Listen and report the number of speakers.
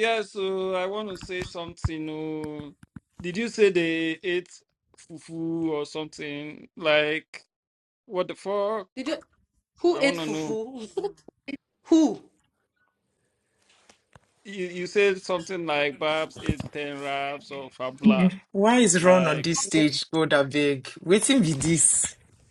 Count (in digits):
3